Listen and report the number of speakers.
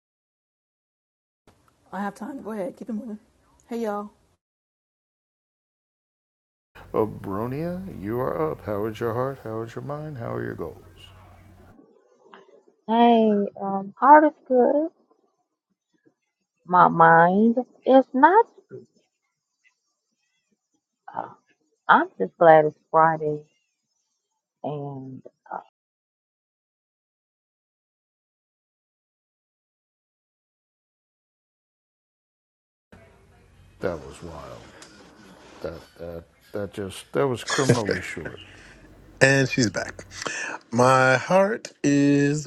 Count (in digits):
4